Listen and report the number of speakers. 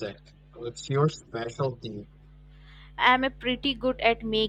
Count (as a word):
two